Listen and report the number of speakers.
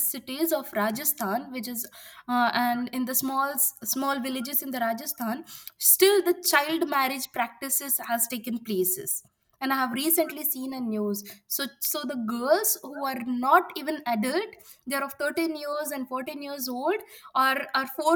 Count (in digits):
1